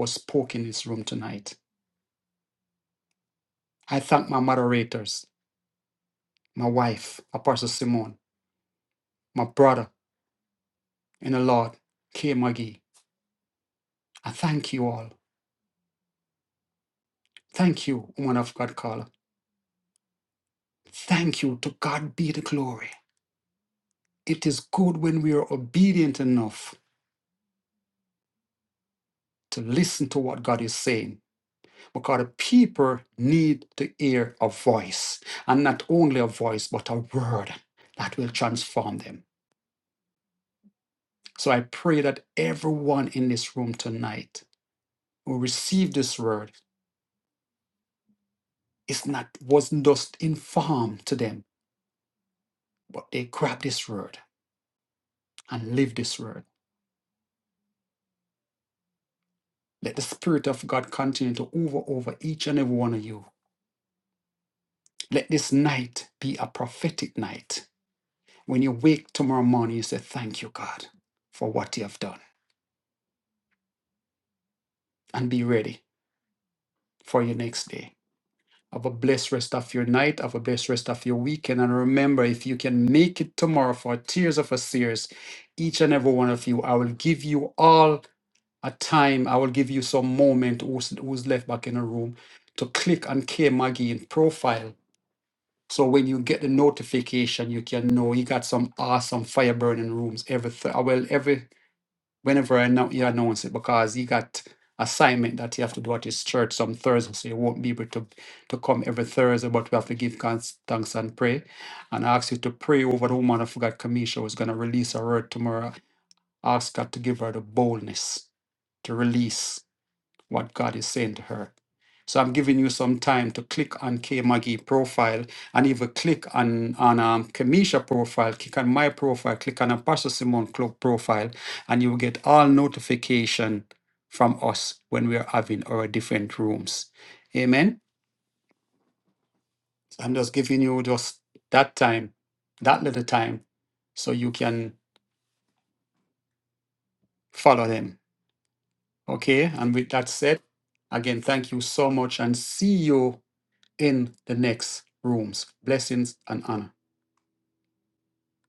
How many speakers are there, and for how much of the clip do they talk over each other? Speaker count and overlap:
1, no overlap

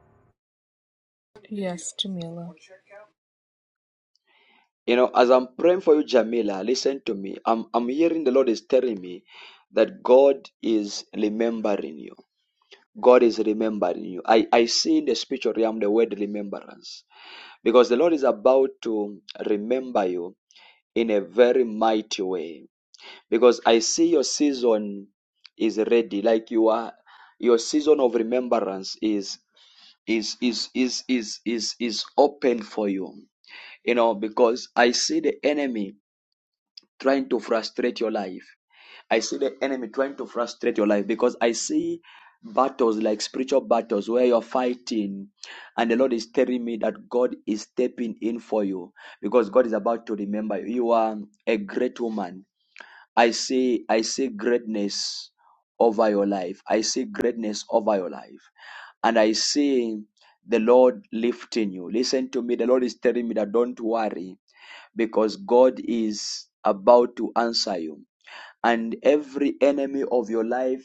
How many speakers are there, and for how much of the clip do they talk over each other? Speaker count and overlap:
2, no overlap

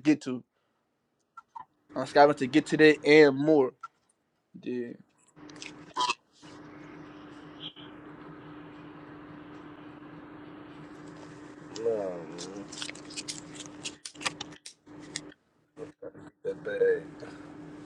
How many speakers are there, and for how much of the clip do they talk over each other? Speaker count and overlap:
2, no overlap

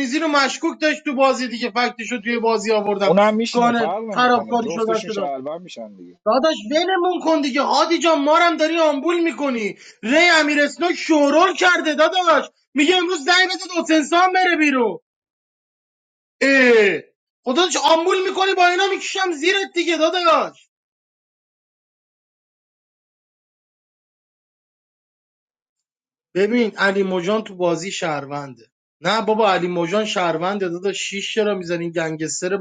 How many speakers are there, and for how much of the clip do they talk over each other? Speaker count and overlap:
2, about 6%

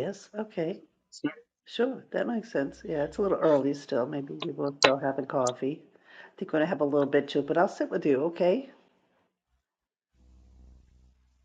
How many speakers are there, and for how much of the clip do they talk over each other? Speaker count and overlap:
1, no overlap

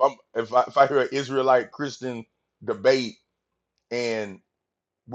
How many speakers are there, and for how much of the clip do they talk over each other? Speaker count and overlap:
1, no overlap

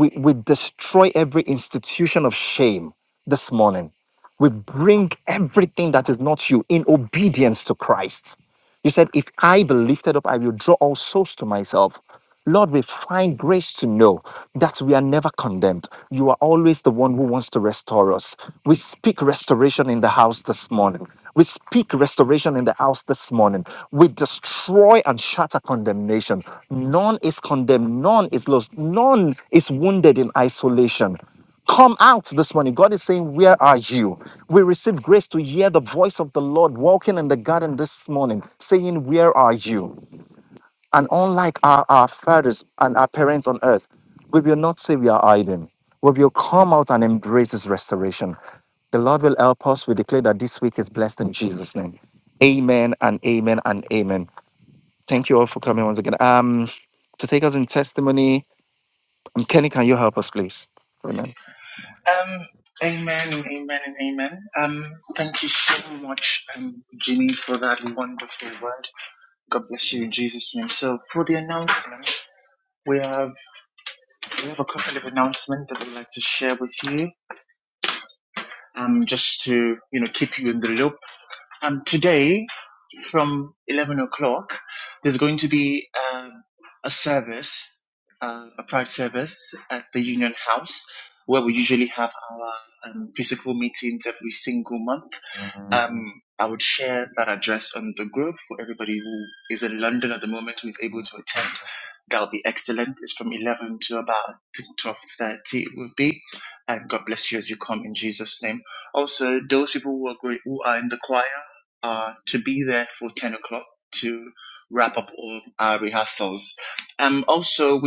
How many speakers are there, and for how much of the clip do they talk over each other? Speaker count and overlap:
2, no overlap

